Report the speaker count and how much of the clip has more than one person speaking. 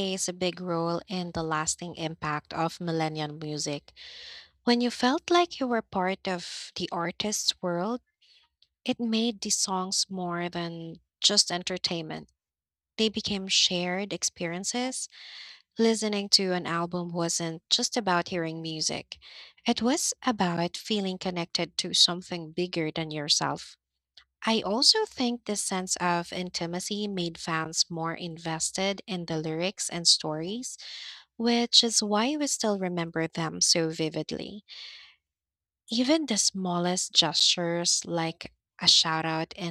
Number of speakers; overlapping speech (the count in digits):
1, no overlap